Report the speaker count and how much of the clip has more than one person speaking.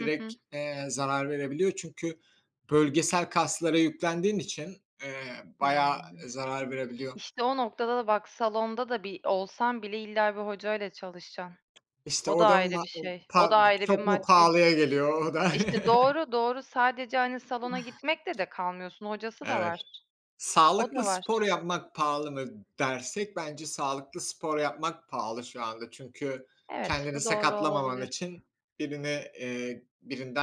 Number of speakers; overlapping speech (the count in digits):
2, about 16%